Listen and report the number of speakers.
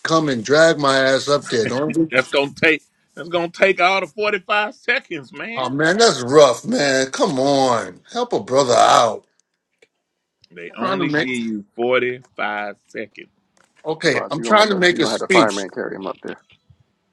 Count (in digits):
3